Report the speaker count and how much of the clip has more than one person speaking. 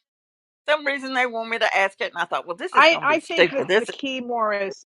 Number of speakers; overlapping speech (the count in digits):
2, about 25%